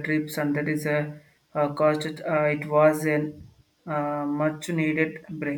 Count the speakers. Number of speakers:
1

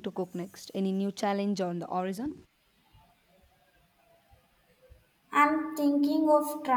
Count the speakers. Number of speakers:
2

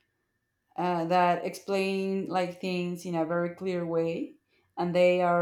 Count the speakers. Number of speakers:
1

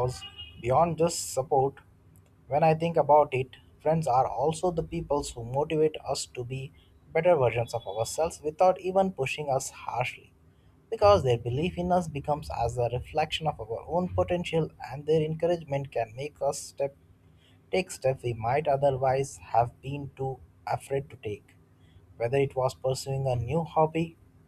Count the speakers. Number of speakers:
1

